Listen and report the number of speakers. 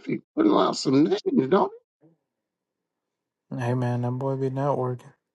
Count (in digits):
2